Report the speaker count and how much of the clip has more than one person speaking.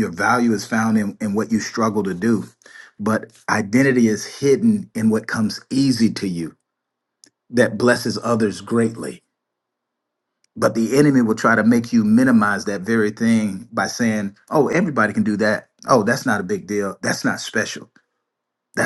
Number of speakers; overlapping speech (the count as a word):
one, no overlap